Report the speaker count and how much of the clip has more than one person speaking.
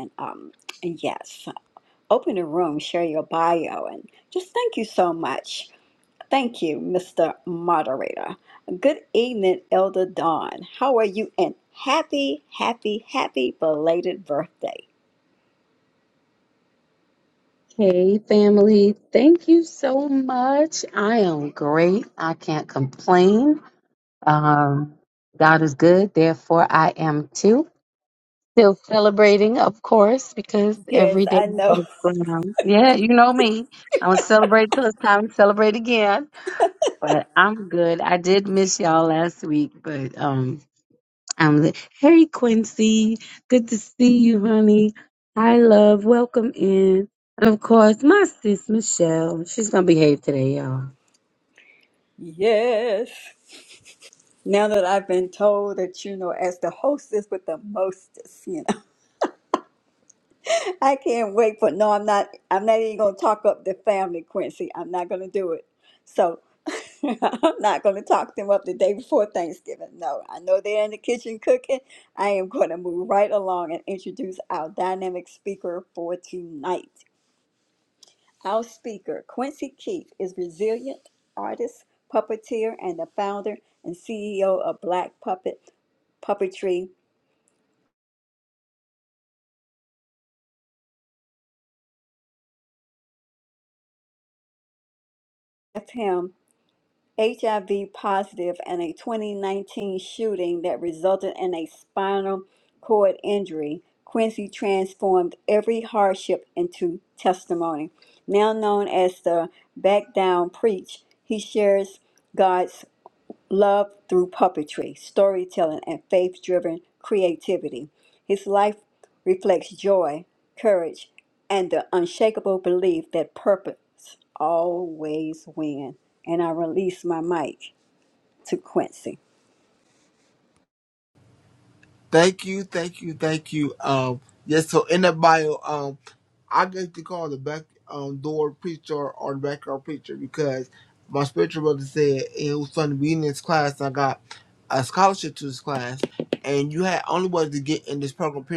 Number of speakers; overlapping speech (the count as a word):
three, about 1%